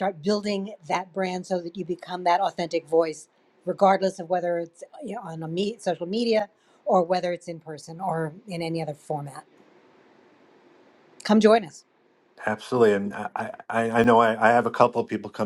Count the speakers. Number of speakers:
2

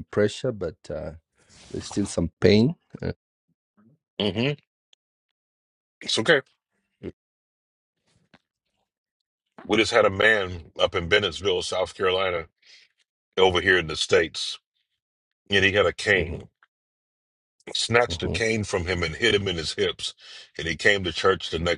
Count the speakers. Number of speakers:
2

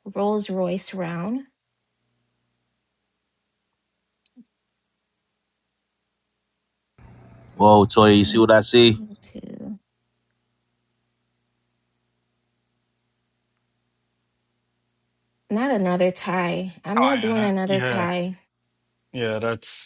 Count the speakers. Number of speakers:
3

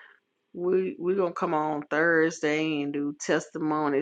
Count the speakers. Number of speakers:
1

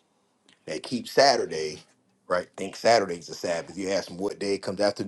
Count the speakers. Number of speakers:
1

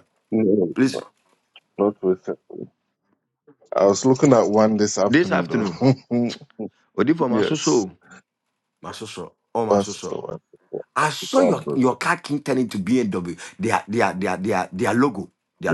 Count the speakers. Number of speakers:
2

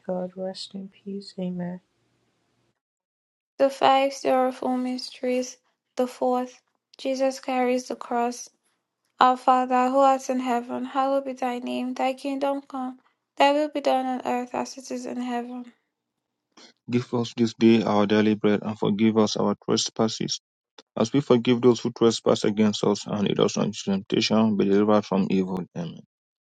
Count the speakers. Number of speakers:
3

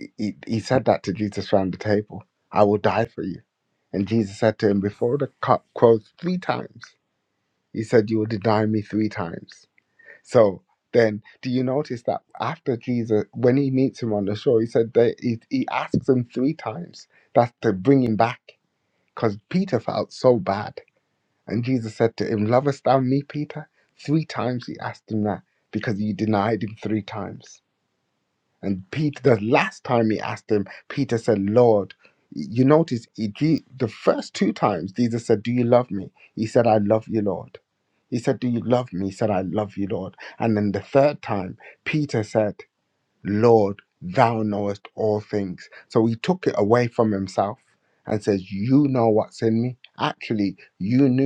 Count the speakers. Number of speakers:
1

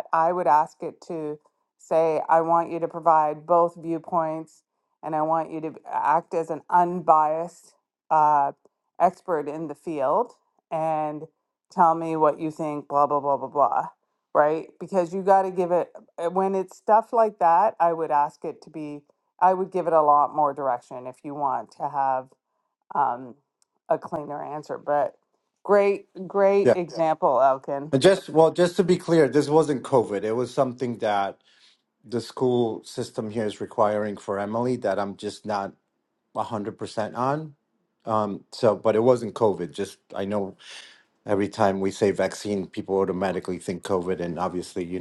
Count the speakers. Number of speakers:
2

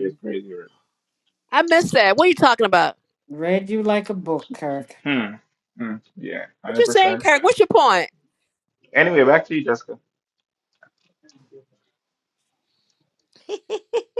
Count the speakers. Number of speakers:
3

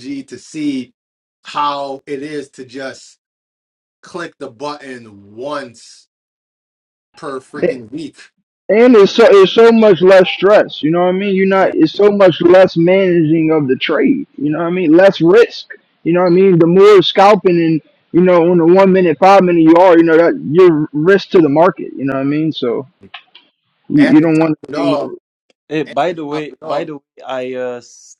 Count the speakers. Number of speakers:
3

